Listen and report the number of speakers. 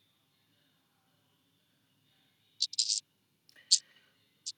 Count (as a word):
zero